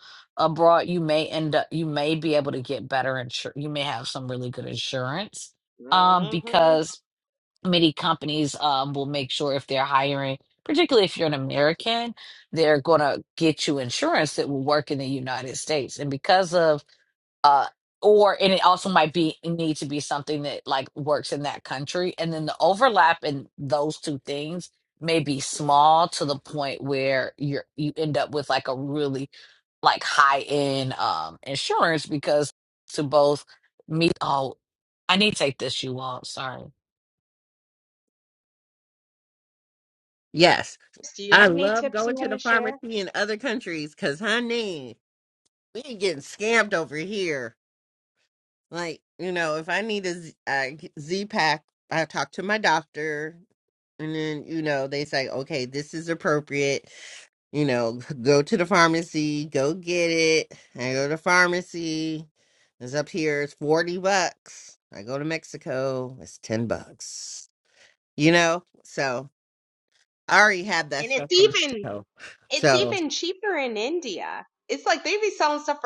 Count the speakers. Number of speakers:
three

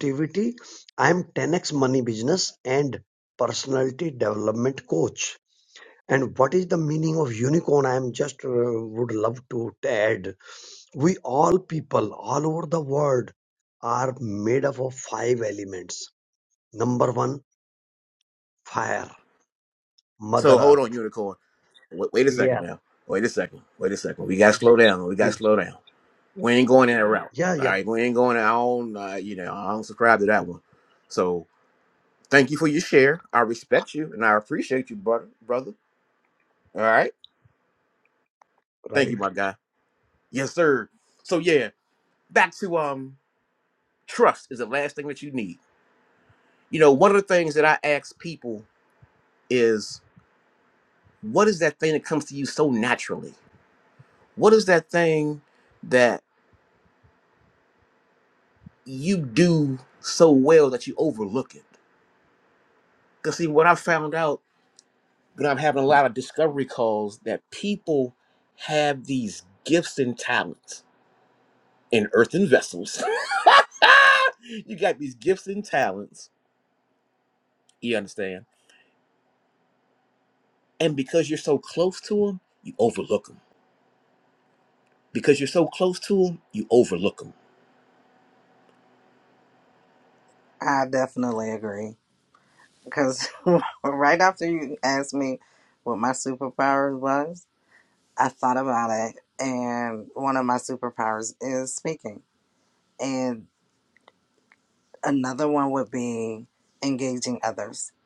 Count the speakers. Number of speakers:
three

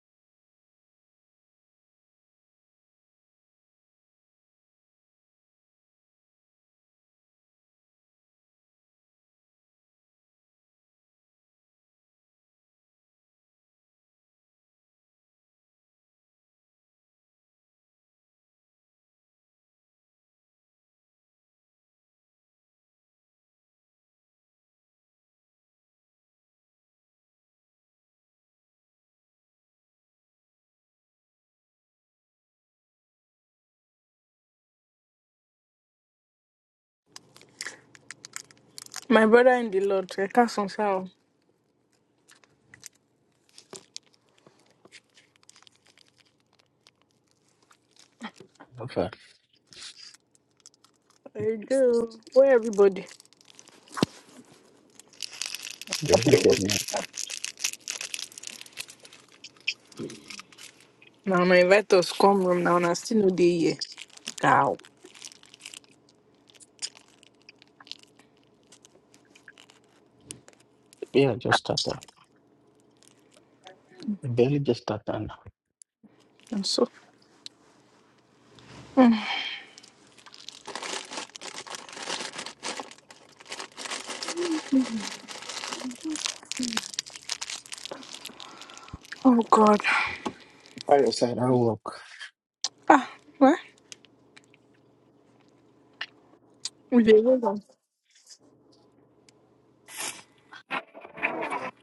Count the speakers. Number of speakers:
two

